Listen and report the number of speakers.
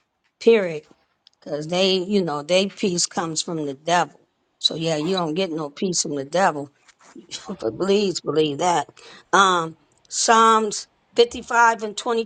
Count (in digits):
1